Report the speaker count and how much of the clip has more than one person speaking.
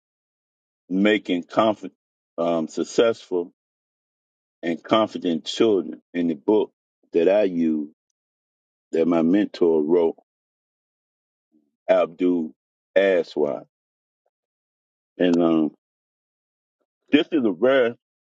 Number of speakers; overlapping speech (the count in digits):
1, no overlap